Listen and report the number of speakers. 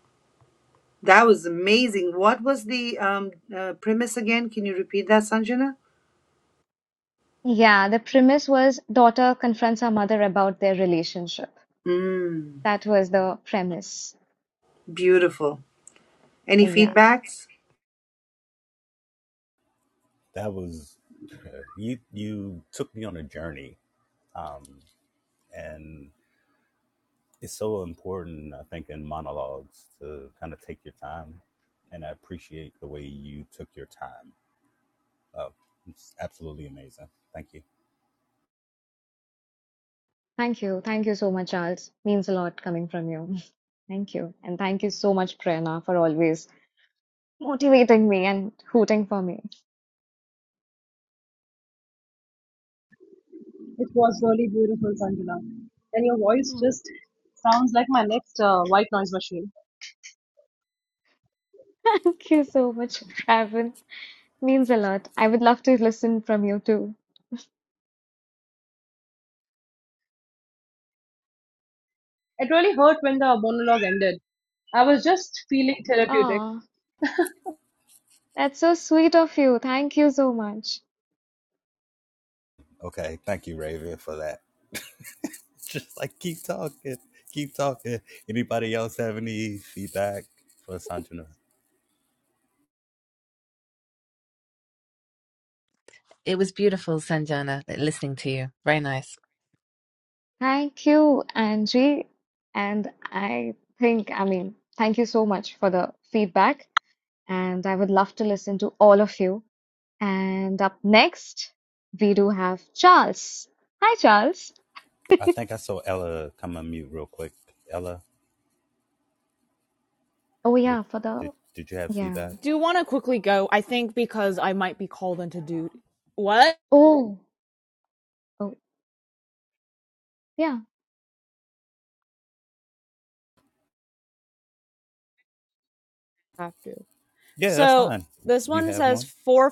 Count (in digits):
6